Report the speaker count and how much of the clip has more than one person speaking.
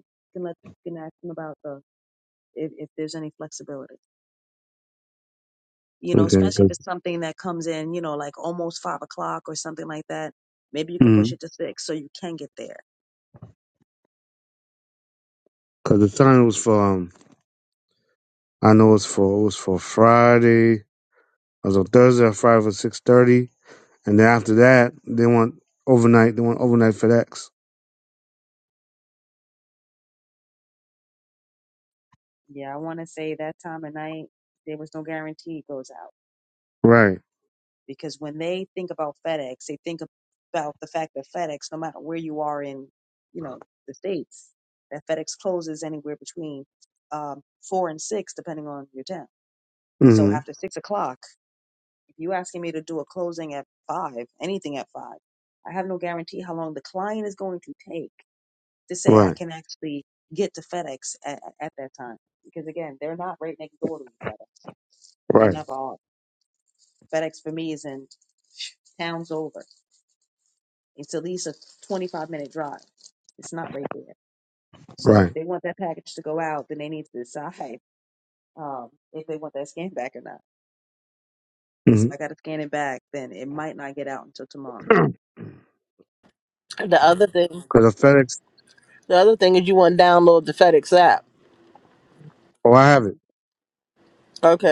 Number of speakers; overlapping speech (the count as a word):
three, about 2%